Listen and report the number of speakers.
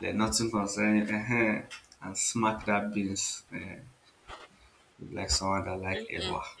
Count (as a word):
one